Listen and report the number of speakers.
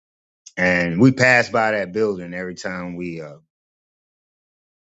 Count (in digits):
1